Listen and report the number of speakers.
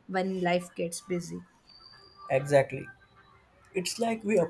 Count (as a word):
two